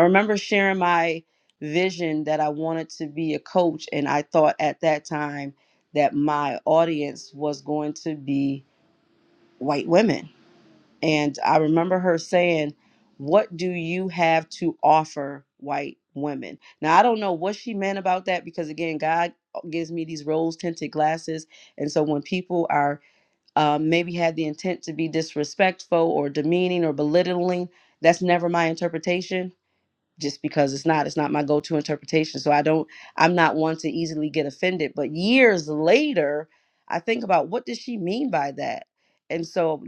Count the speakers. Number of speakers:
one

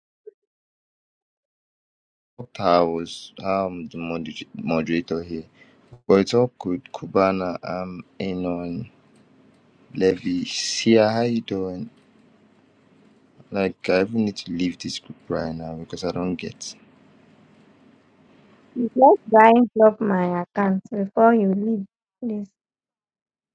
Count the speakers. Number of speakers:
two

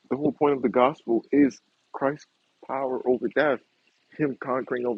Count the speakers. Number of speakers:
one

